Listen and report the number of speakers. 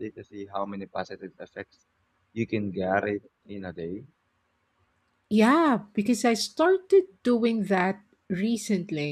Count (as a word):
two